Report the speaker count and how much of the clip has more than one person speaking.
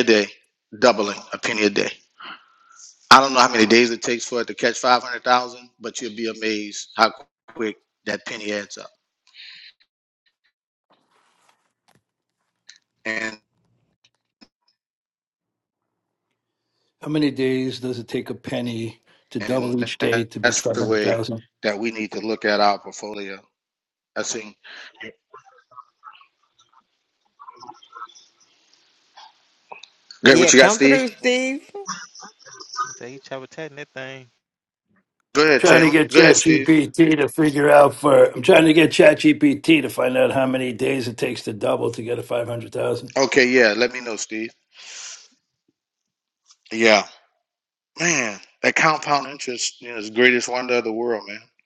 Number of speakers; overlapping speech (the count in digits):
4, about 6%